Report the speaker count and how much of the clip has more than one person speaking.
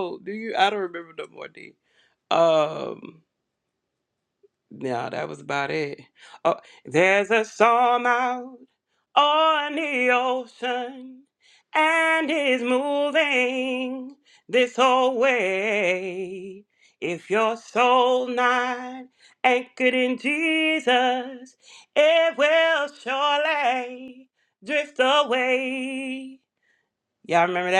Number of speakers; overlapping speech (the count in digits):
1, no overlap